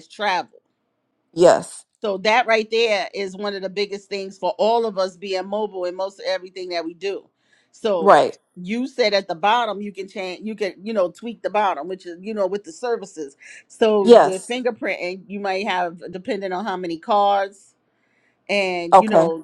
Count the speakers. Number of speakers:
2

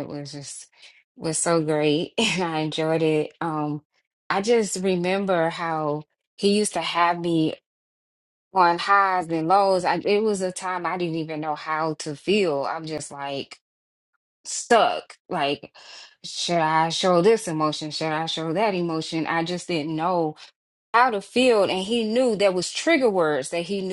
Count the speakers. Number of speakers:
1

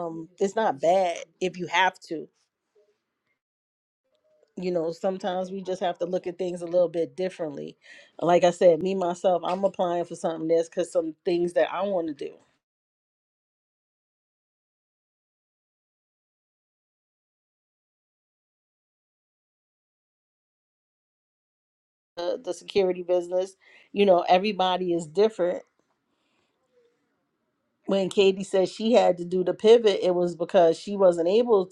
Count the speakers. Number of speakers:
1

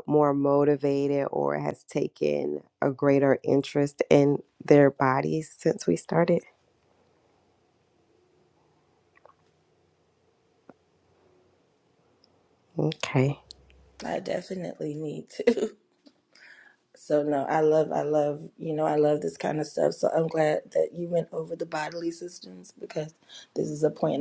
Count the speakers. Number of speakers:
2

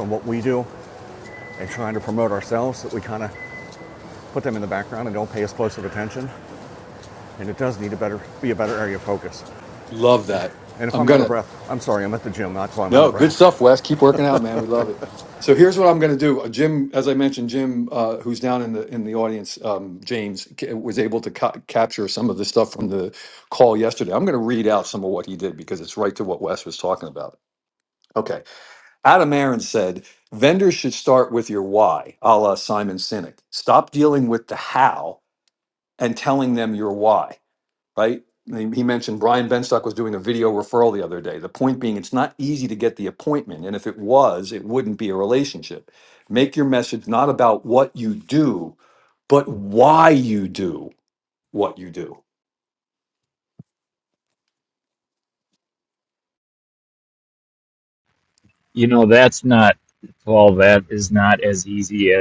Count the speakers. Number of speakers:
3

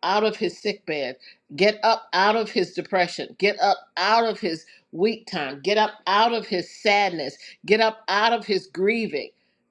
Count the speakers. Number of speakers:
1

